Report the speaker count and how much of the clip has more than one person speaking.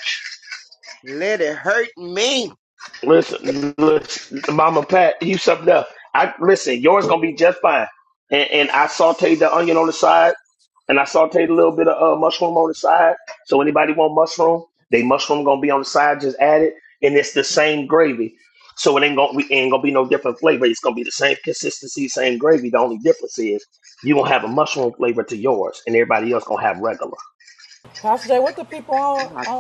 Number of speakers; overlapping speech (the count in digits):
3, about 1%